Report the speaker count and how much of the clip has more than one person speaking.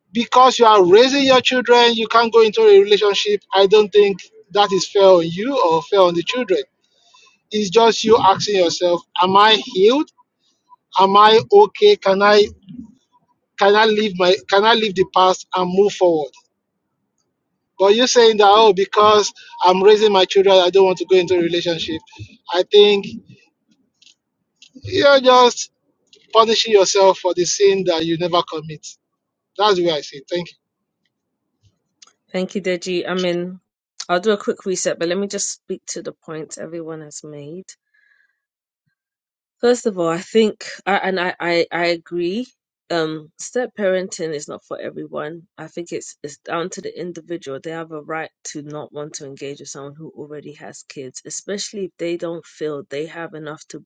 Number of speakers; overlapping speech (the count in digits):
2, no overlap